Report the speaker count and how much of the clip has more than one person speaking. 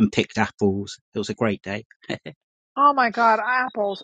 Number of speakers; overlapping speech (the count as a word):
two, no overlap